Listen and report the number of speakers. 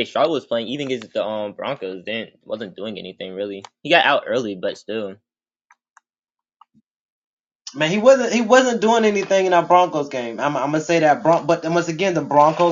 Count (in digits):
2